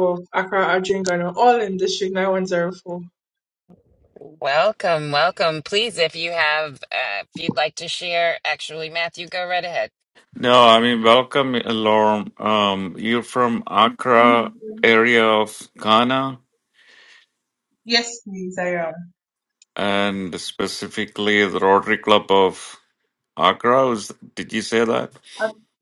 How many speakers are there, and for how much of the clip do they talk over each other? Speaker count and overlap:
three, no overlap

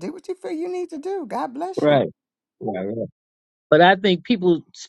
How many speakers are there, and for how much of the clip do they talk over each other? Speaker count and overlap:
two, about 4%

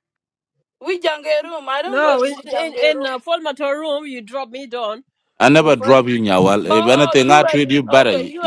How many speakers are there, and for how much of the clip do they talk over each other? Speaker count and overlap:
three, about 36%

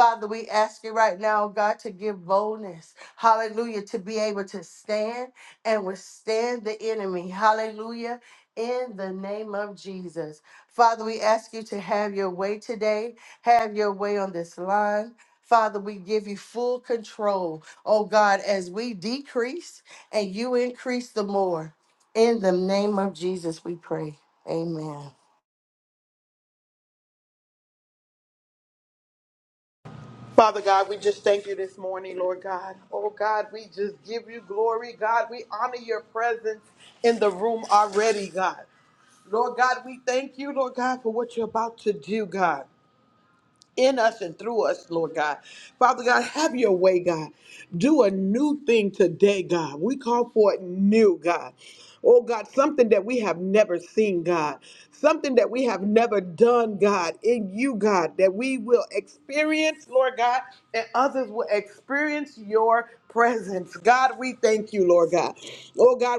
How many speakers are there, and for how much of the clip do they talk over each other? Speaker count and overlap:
two, no overlap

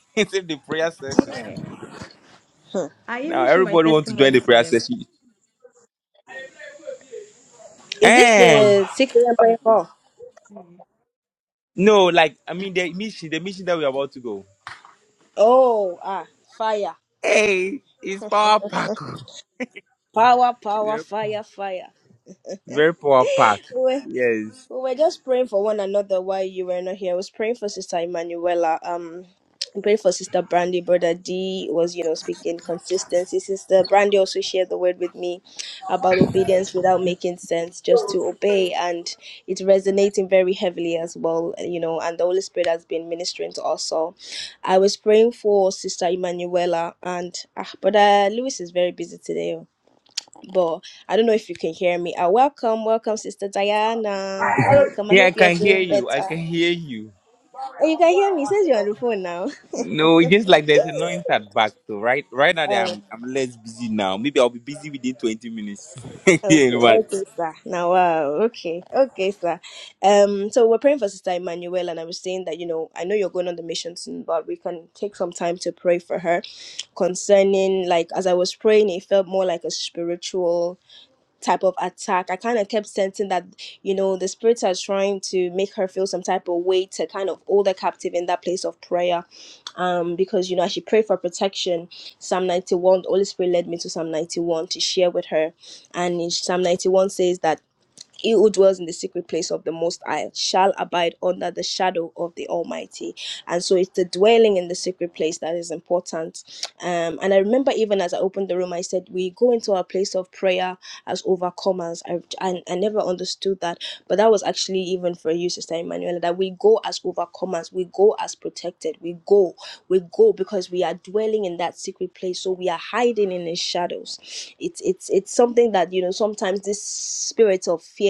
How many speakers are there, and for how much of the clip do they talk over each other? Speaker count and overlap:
three, about 4%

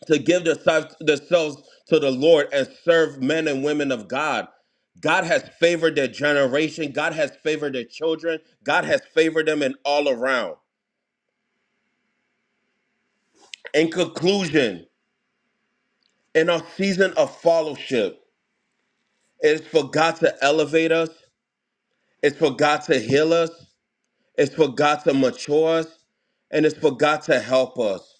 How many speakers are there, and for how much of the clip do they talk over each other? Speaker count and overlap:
one, no overlap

